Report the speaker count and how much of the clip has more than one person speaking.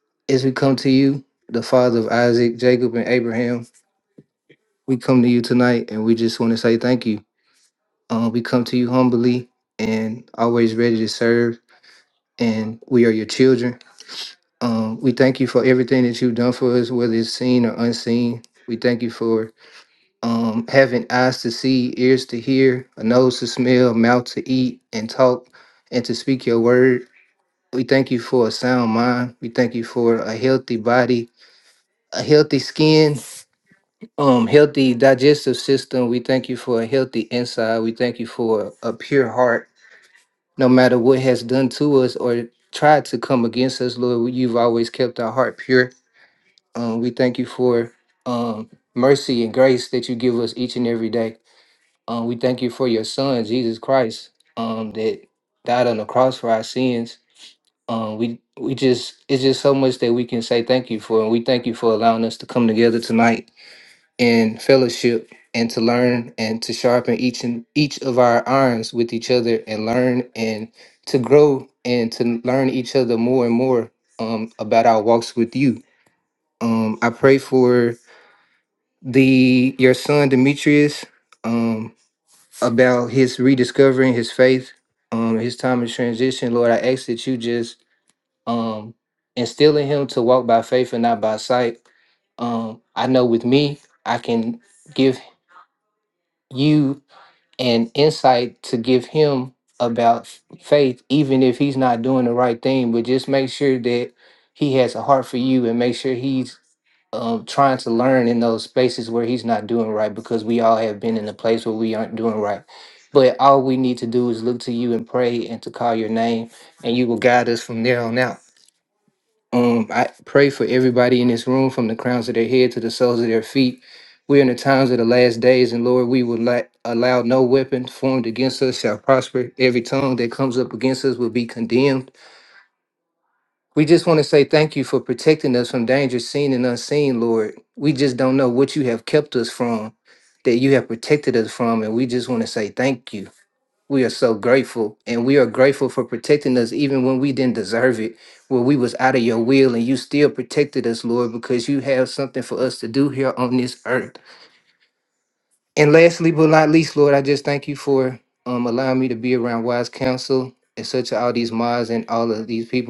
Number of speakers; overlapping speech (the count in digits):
1, no overlap